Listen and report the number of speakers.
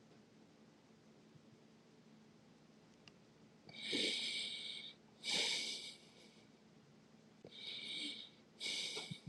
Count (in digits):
0